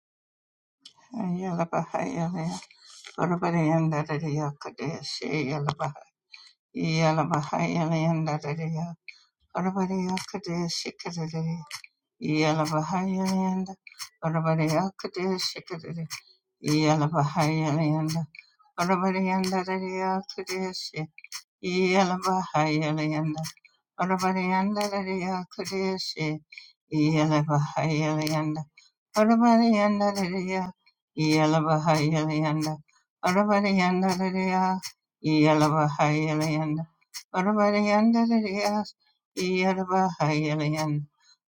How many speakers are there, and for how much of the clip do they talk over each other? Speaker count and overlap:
1, no overlap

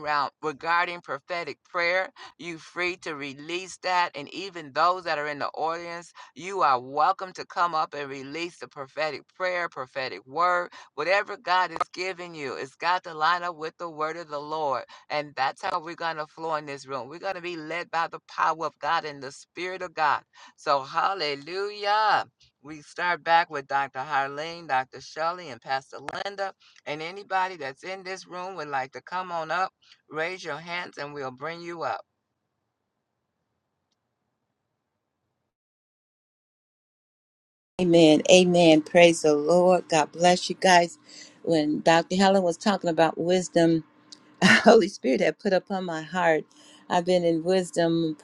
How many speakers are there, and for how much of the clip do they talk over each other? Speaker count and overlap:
2, no overlap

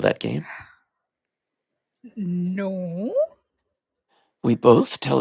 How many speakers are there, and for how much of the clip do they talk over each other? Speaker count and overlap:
2, no overlap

